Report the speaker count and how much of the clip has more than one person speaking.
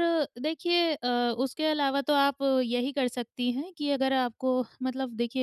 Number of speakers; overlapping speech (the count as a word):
one, no overlap